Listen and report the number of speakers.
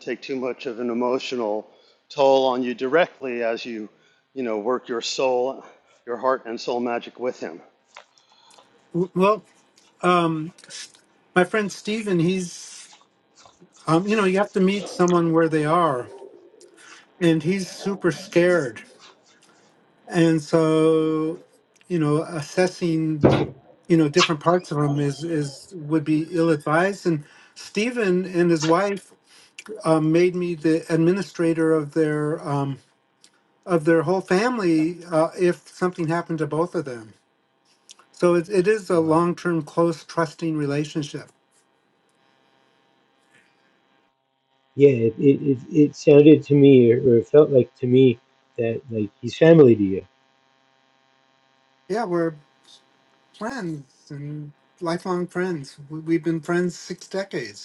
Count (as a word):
three